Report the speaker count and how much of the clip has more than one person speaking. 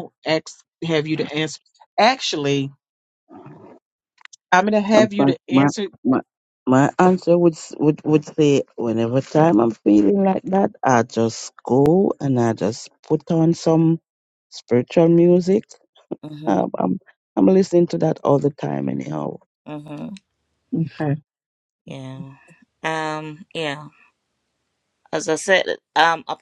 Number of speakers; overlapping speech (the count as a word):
three, about 4%